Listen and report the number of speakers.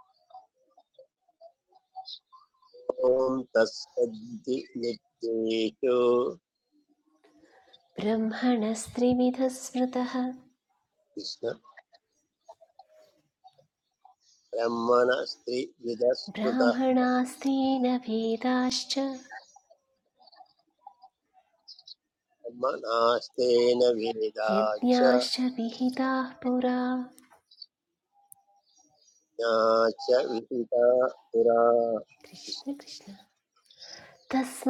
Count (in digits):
2